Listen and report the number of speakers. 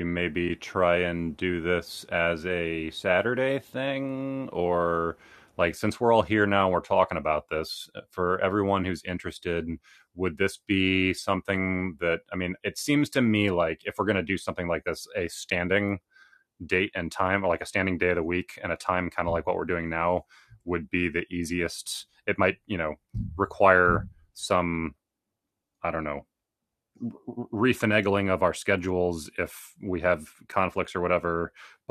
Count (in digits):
1